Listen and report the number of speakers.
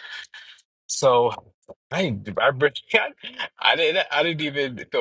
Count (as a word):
one